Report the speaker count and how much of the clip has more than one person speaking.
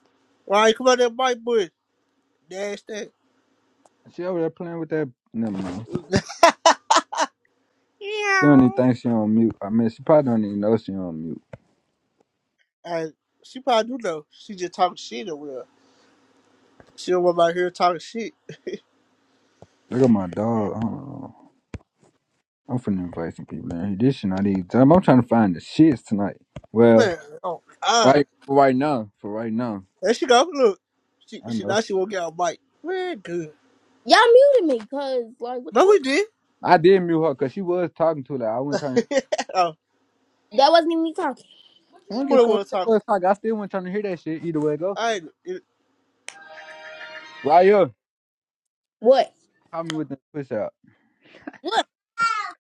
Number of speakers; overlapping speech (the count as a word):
three, about 4%